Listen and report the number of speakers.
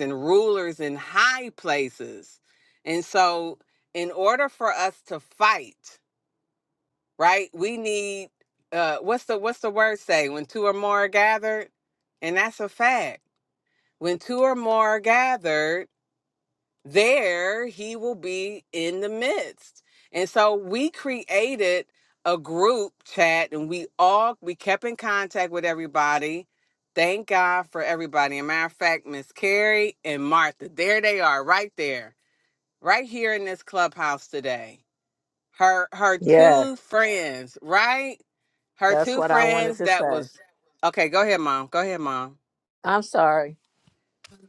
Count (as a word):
two